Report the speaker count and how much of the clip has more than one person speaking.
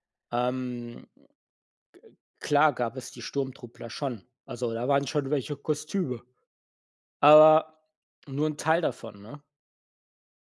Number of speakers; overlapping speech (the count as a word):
one, no overlap